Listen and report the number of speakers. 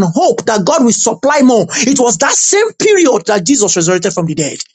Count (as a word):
one